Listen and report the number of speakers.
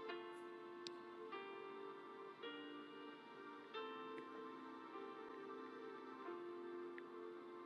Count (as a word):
zero